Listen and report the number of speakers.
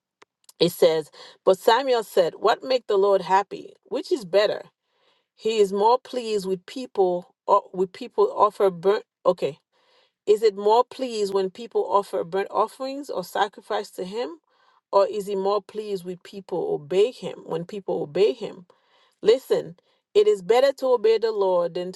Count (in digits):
1